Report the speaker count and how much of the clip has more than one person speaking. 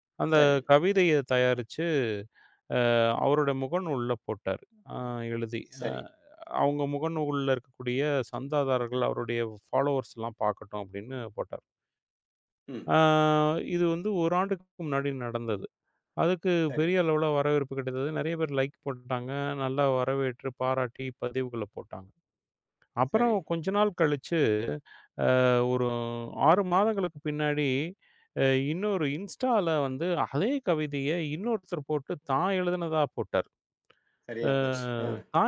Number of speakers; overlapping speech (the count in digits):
2, about 3%